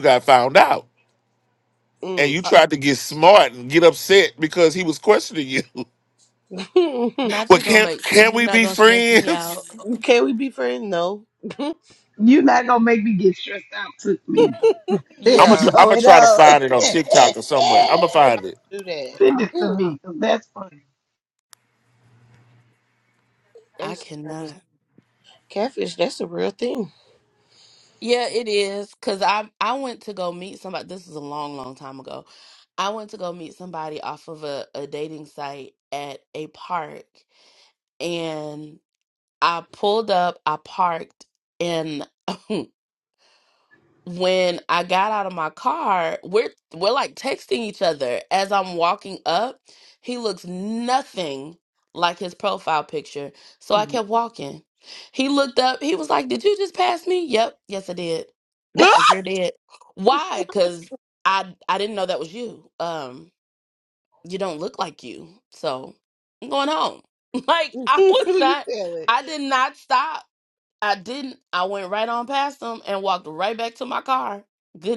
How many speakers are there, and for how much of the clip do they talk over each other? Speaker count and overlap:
four, about 9%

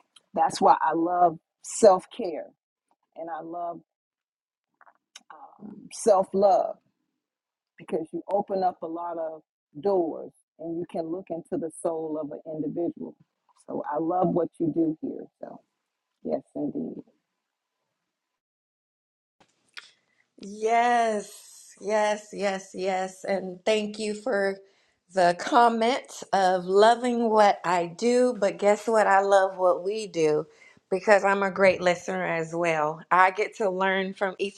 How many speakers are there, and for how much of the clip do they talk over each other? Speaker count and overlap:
two, no overlap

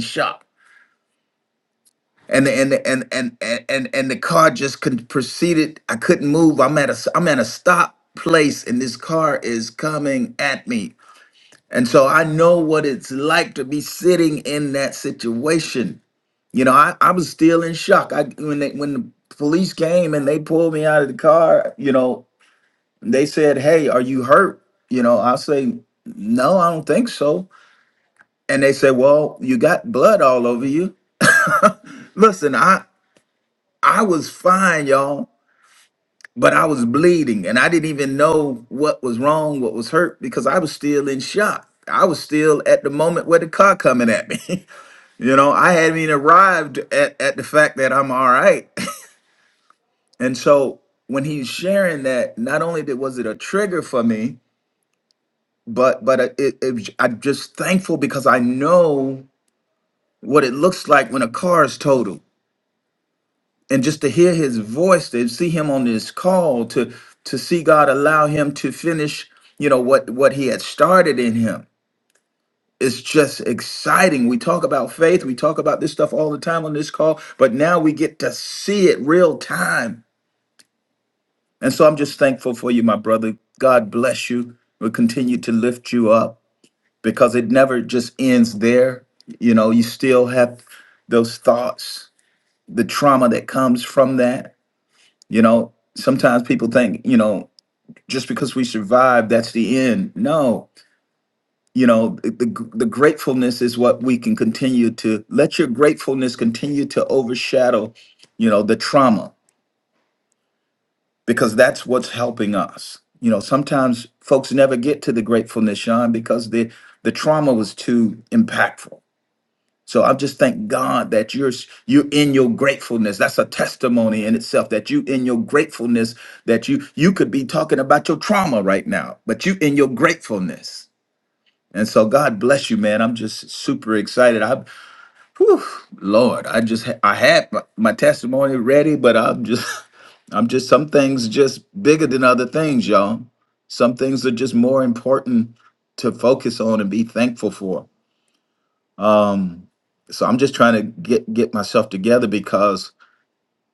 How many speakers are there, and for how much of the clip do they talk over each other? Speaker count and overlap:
one, no overlap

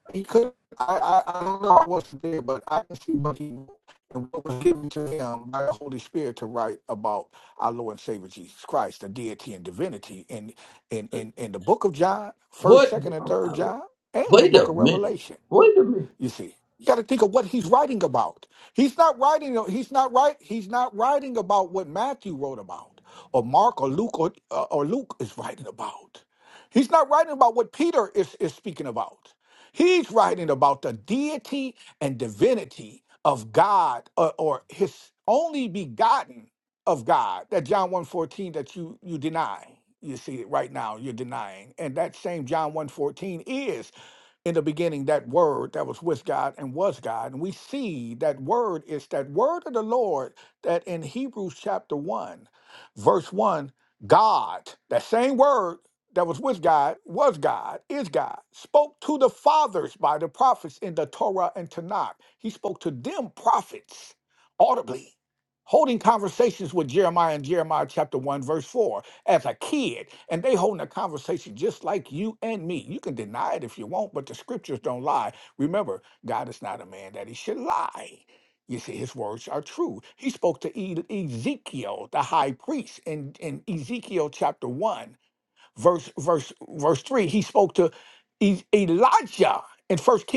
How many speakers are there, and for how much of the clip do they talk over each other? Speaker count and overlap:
two, about 1%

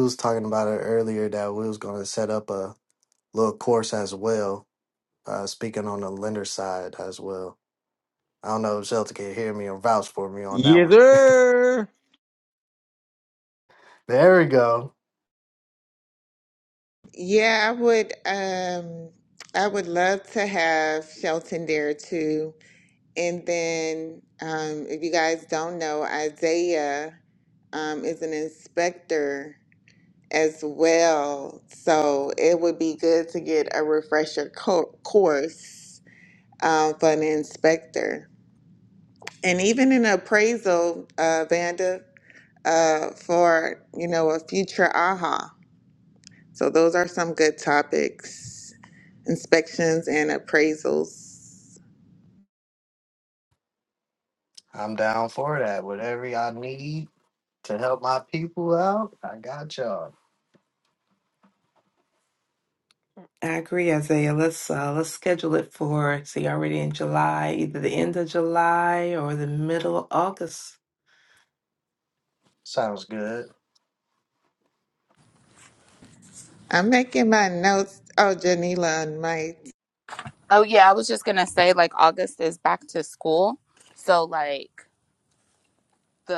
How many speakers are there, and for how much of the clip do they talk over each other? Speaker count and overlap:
five, under 1%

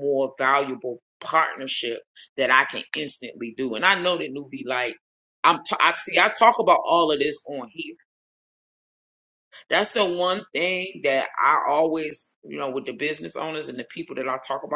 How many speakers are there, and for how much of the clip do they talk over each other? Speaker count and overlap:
one, no overlap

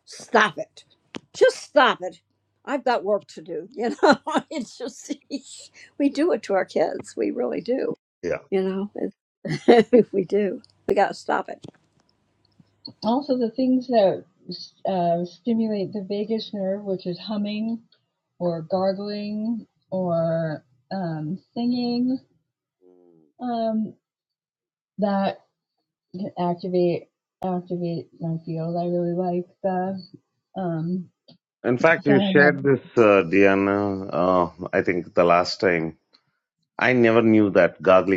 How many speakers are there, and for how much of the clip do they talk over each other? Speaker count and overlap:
three, about 1%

